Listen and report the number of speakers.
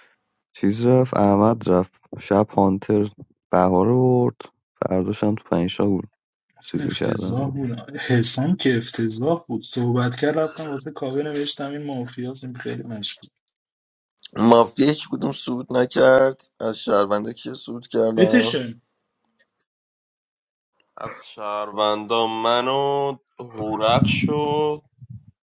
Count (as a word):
four